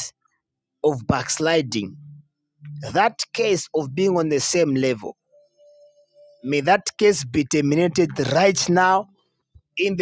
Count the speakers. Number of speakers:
1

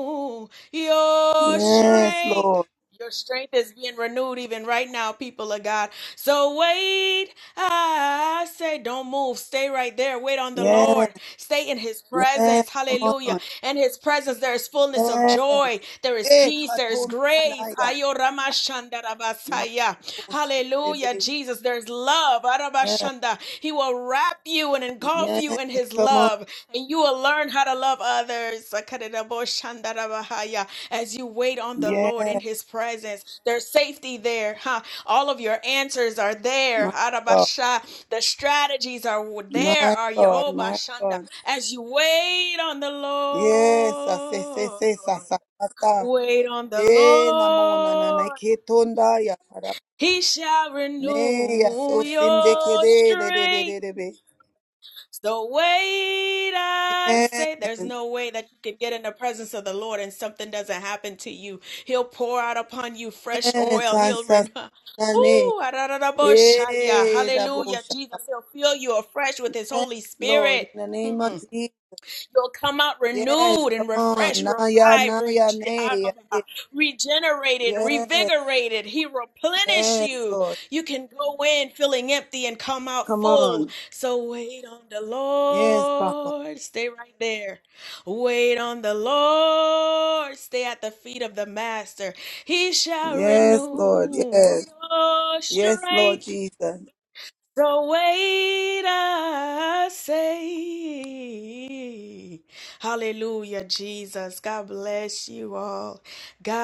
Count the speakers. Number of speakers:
2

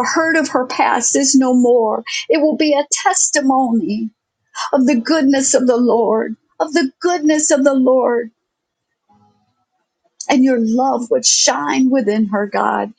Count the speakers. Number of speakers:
1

